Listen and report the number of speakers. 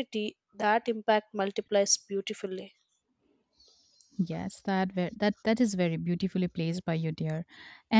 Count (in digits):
2